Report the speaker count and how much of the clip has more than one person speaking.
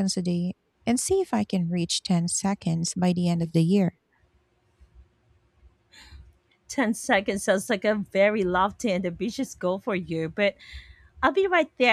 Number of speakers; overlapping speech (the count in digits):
2, no overlap